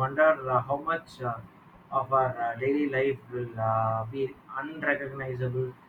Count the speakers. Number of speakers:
one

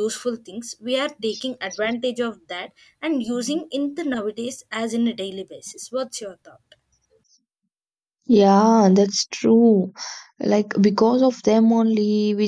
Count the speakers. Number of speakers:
two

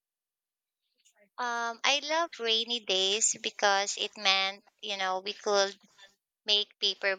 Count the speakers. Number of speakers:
one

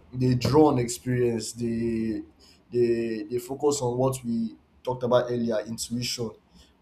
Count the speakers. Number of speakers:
one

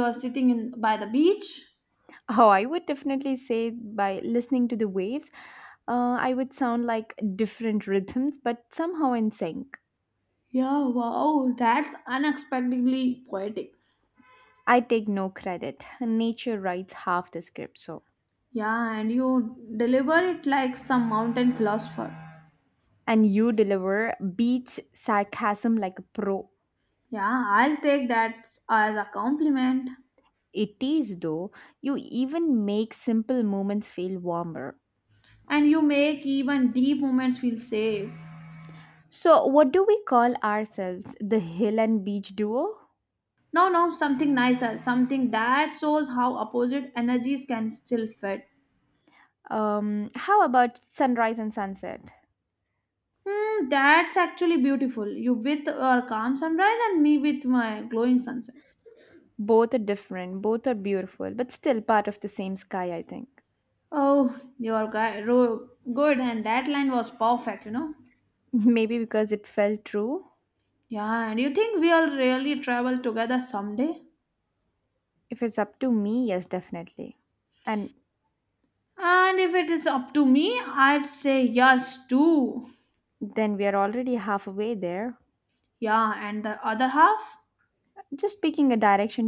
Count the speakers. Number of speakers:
two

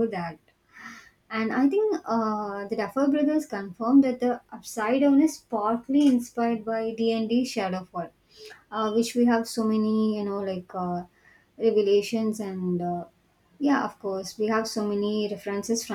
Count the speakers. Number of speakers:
one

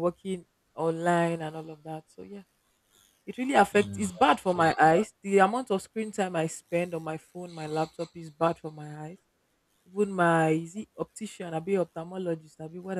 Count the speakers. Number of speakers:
one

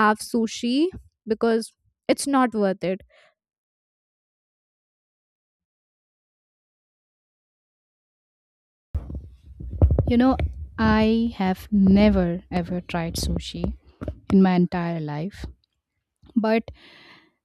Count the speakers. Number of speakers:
two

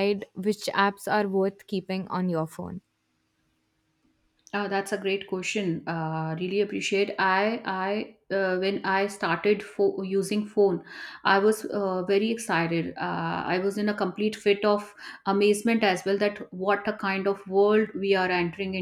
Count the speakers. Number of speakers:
two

